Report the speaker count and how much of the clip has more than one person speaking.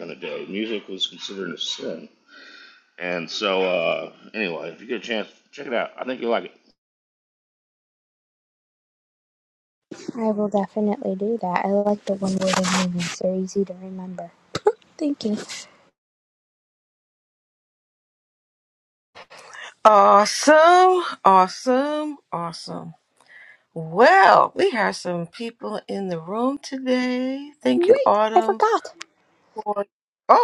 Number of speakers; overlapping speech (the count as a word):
three, about 3%